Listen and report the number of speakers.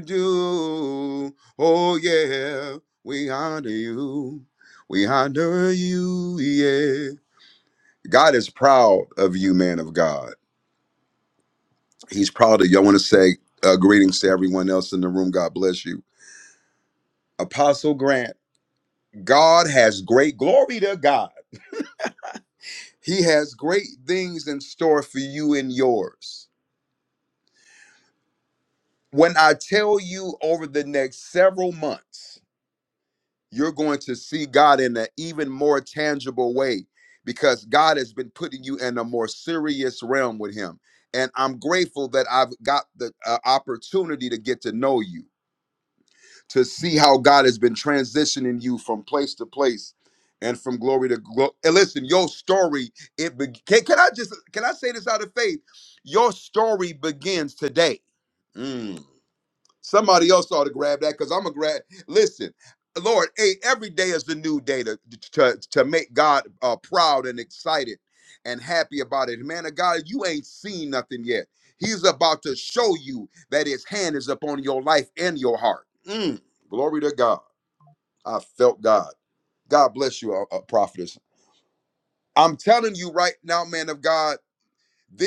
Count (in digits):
1